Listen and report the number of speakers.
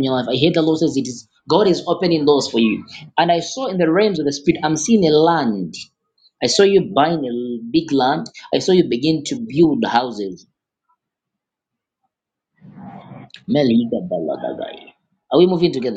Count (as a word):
one